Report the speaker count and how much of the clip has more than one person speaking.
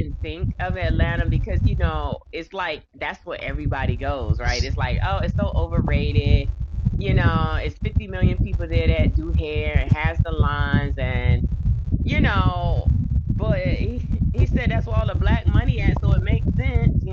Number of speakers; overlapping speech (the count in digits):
1, no overlap